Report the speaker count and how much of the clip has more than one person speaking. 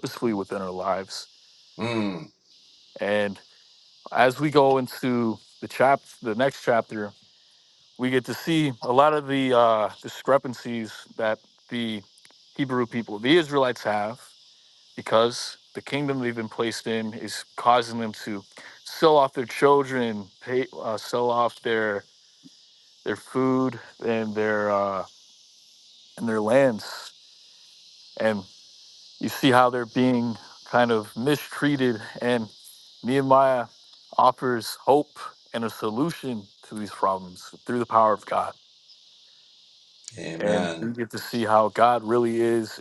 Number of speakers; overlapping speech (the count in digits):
2, about 1%